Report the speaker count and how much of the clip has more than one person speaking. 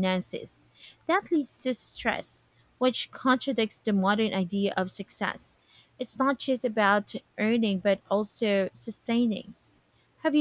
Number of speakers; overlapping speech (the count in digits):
1, no overlap